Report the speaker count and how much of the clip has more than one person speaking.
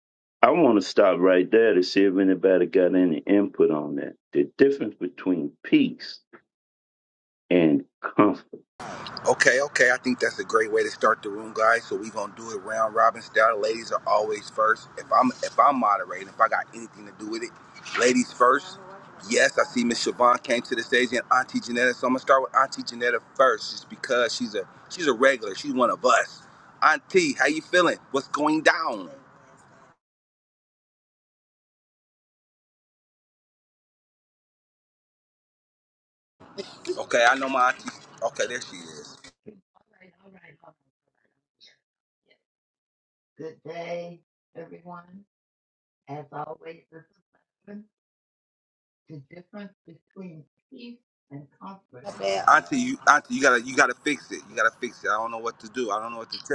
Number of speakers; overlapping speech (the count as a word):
three, under 1%